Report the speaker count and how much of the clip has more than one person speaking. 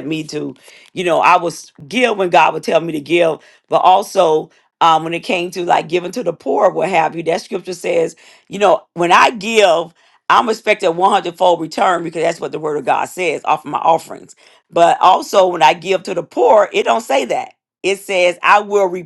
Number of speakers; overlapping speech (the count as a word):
one, no overlap